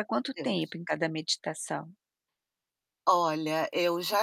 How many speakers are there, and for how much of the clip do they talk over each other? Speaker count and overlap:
2, about 4%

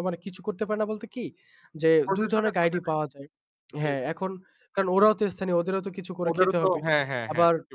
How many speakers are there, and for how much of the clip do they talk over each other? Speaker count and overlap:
2, about 22%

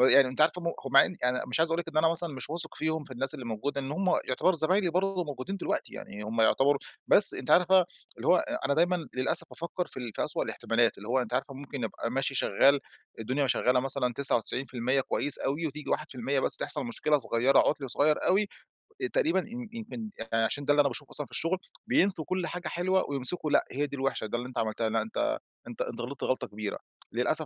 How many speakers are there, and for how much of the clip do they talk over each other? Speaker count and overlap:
1, no overlap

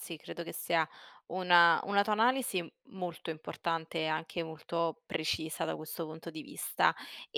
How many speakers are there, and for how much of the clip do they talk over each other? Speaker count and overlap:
1, no overlap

